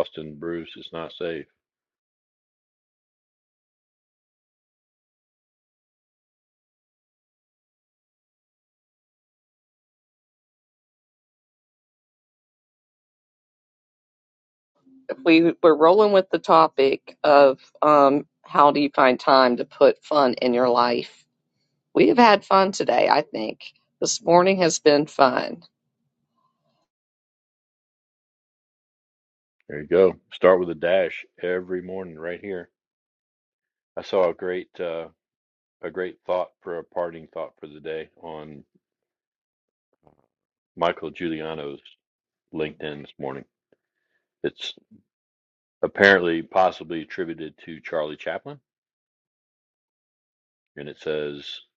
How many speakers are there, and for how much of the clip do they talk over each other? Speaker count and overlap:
2, no overlap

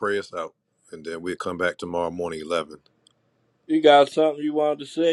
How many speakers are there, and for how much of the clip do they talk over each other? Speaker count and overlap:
2, no overlap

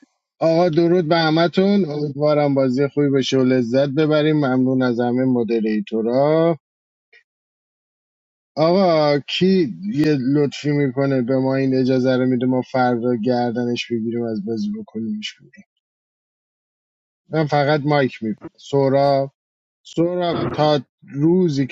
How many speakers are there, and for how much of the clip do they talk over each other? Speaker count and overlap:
1, no overlap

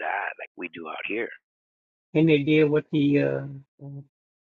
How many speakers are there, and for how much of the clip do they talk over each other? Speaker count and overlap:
2, no overlap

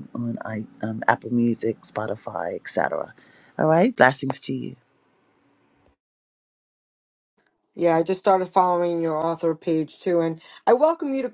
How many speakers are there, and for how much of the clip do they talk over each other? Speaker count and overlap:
2, no overlap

